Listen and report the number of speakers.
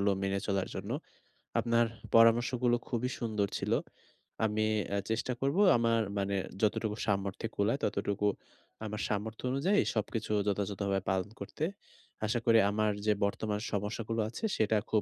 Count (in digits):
1